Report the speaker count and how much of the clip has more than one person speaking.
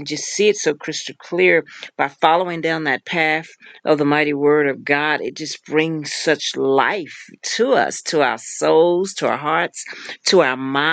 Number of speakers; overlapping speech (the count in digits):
1, no overlap